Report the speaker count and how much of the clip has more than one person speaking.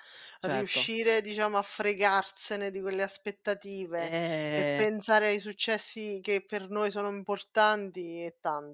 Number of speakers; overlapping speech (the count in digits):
2, about 9%